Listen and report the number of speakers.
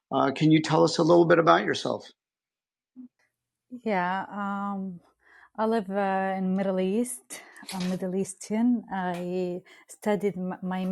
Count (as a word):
two